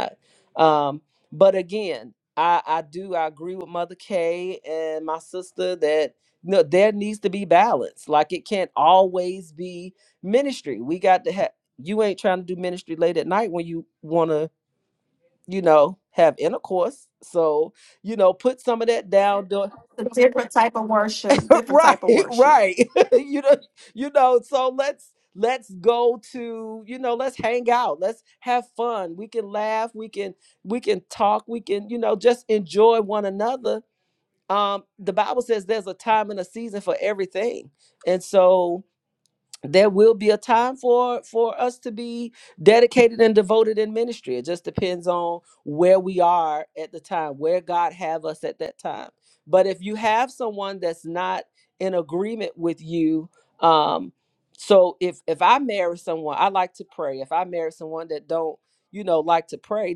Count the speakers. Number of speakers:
two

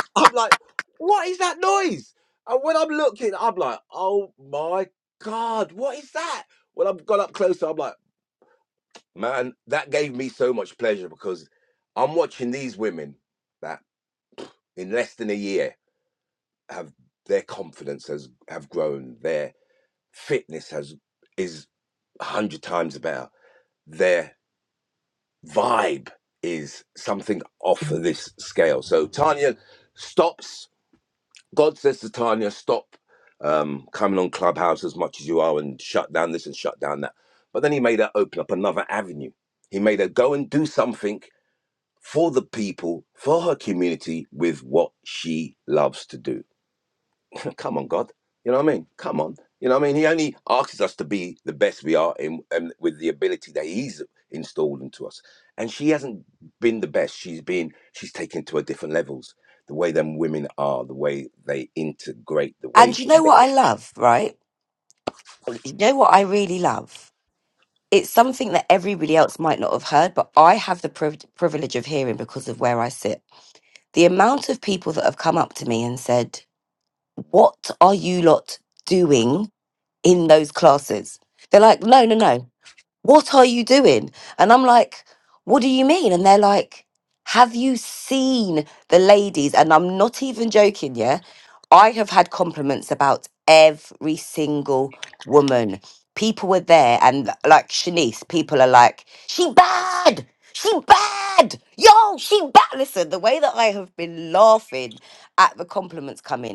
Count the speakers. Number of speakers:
two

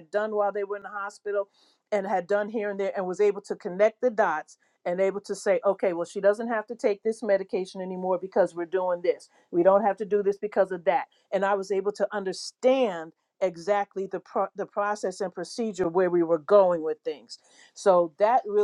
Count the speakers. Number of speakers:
one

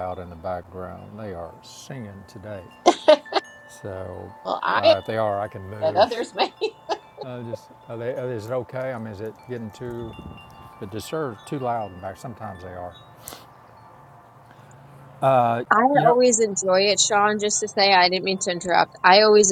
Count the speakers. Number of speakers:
three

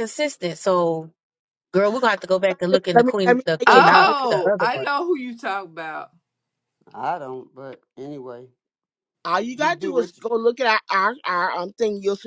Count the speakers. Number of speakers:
four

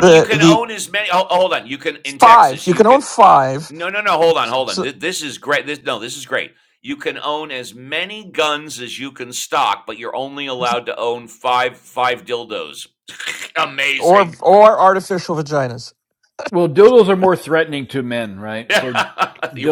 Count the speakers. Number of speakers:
three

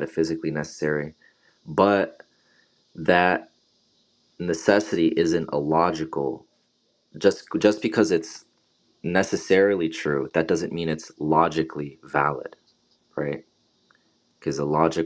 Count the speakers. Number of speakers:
one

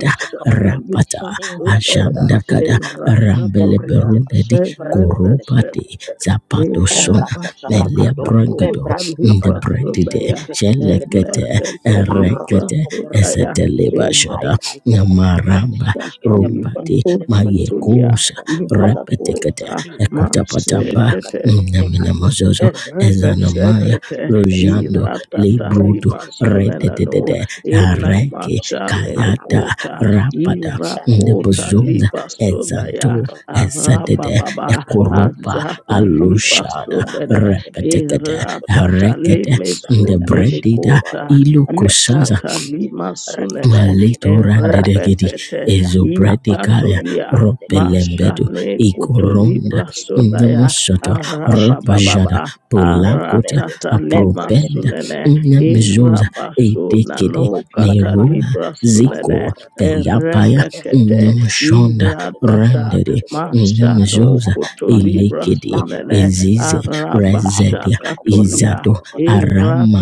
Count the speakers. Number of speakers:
three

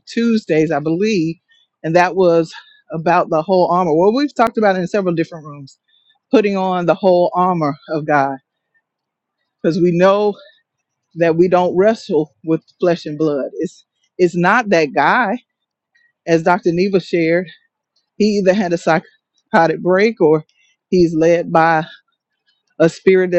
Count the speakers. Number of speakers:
one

